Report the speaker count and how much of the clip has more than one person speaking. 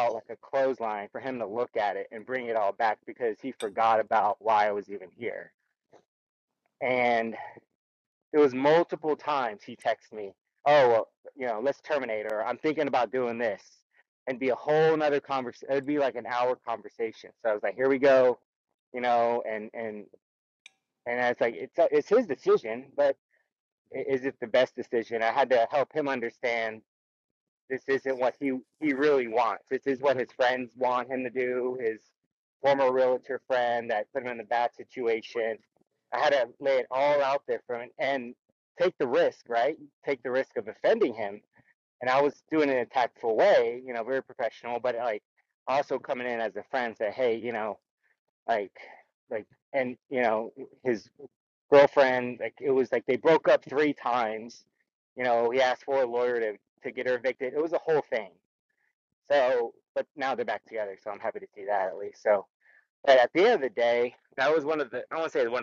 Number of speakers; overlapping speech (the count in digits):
1, no overlap